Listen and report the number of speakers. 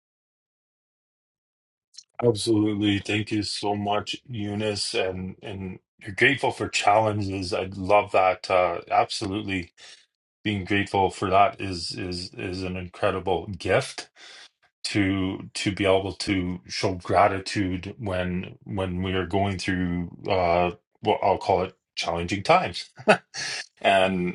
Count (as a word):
one